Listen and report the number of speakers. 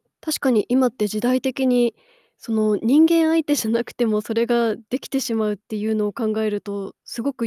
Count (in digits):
1